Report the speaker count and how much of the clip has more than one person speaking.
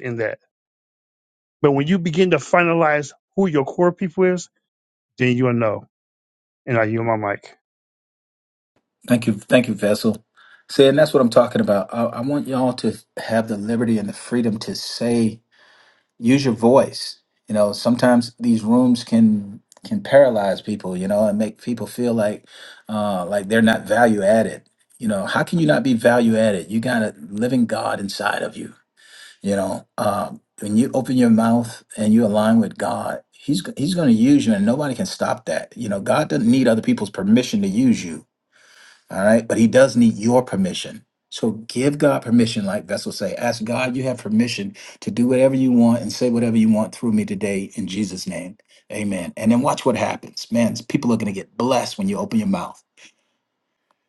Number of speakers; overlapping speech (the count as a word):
two, no overlap